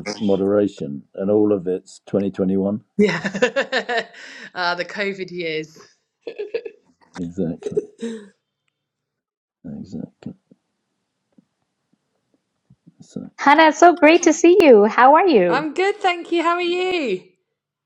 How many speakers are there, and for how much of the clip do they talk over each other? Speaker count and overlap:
three, about 1%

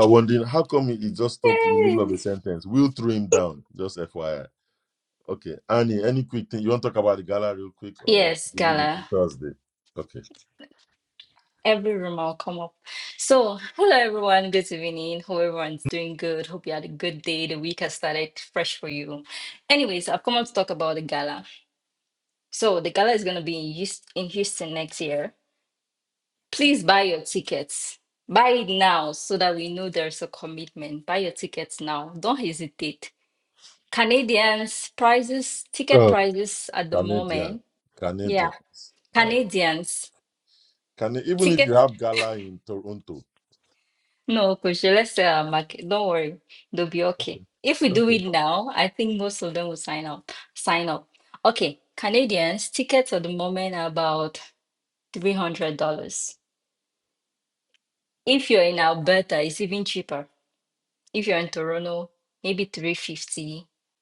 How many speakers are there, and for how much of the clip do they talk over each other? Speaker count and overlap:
two, about 6%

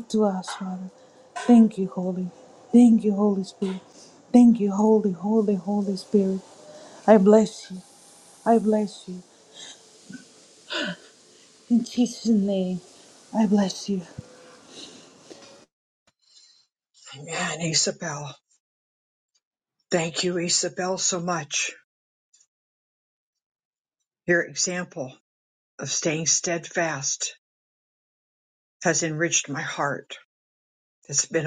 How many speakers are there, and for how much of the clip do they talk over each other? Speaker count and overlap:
two, no overlap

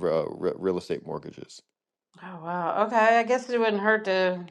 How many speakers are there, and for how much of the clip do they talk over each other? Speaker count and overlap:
two, no overlap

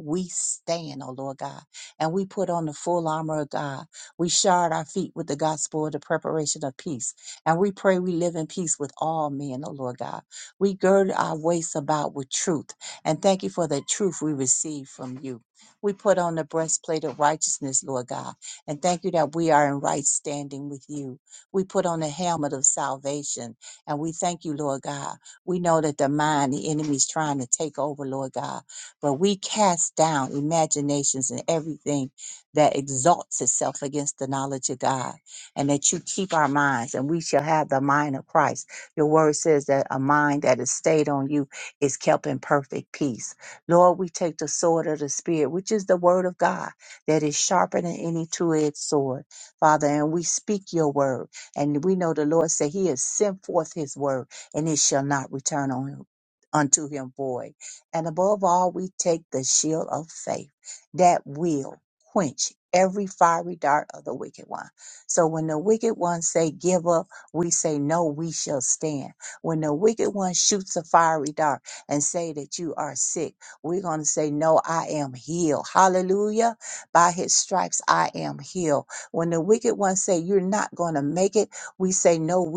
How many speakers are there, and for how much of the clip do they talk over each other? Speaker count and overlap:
one, no overlap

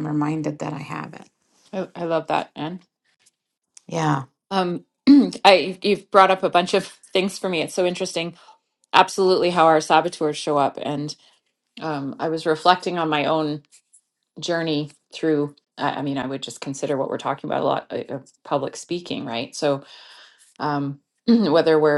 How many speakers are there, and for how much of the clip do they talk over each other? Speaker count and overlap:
two, no overlap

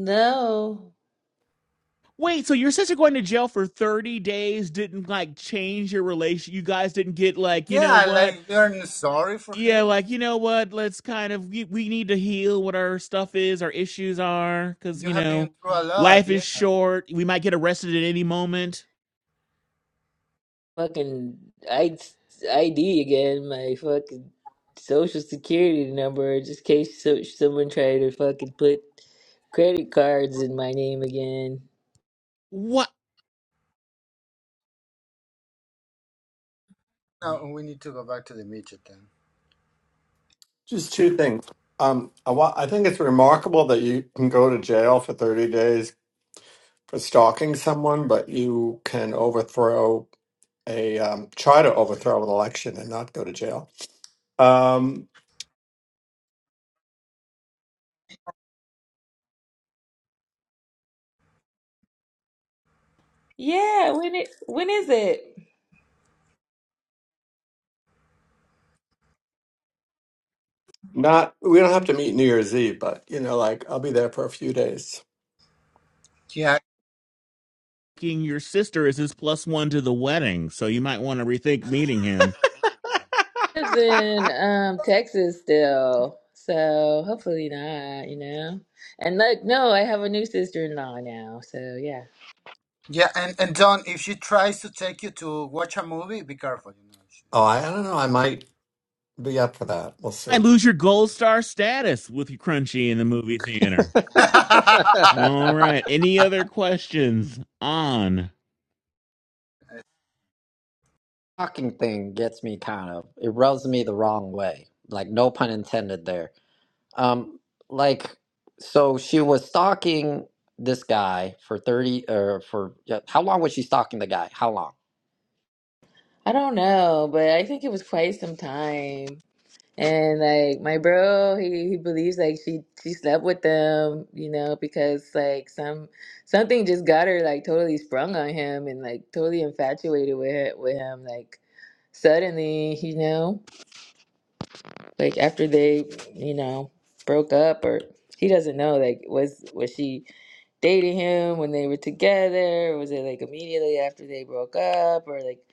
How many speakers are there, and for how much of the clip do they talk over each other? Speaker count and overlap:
five, about 1%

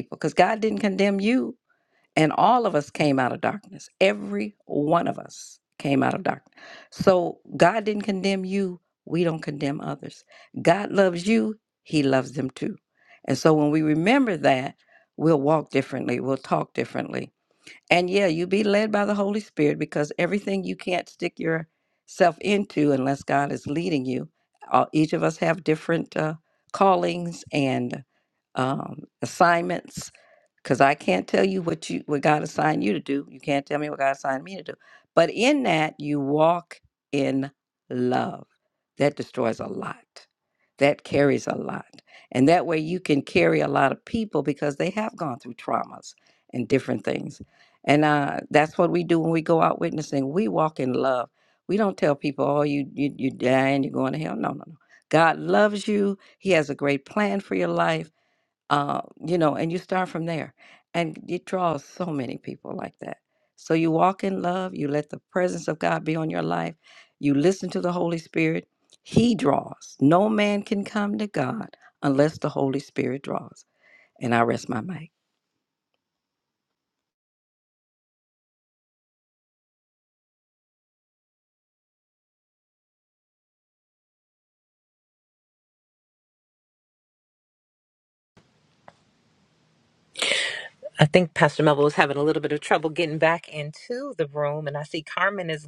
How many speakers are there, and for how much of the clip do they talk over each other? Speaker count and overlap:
two, no overlap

